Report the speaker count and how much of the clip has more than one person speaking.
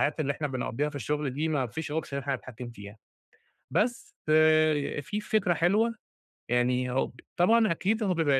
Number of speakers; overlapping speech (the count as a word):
one, no overlap